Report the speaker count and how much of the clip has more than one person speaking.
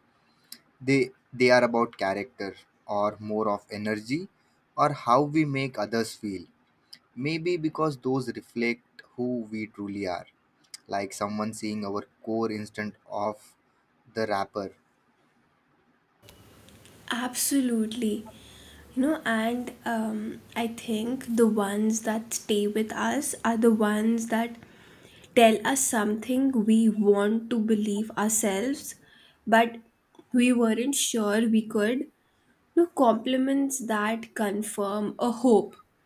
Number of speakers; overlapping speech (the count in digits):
2, no overlap